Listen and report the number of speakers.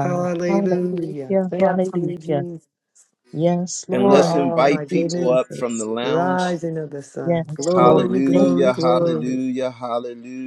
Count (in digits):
3